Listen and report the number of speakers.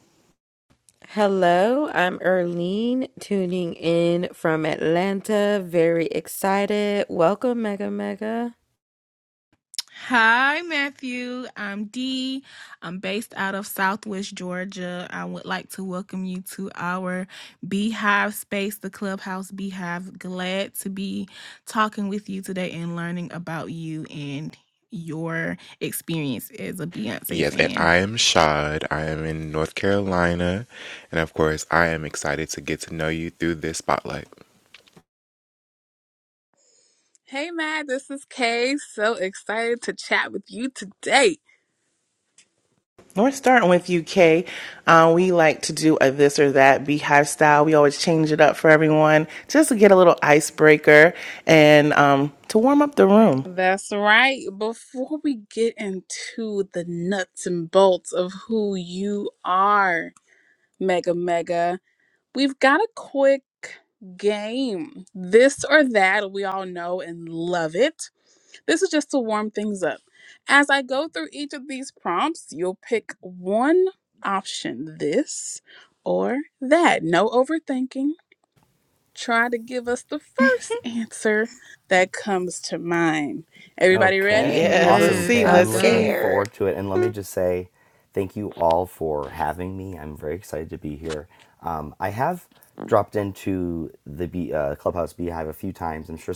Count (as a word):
six